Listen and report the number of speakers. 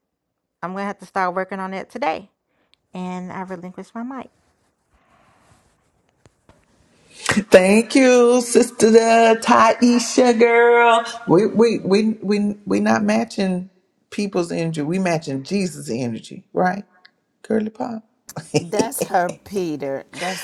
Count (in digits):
3